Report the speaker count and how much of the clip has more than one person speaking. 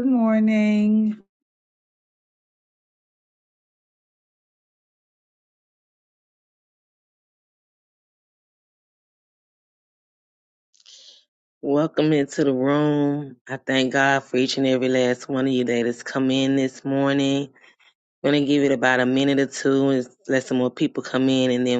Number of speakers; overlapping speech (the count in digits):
2, no overlap